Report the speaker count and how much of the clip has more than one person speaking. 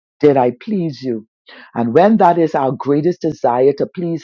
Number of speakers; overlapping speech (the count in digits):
1, no overlap